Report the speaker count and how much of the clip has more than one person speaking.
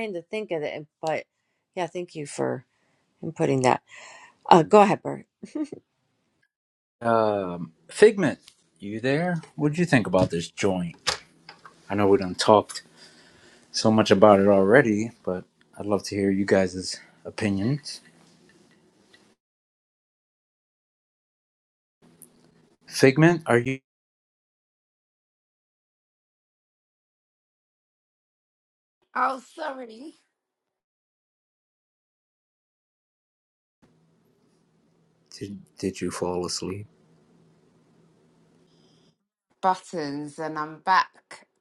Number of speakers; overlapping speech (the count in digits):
3, no overlap